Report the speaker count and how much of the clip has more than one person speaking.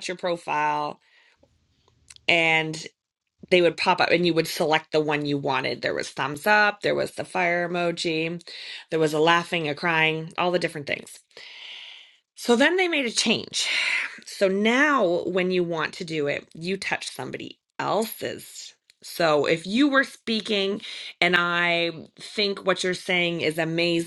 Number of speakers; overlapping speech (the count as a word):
one, no overlap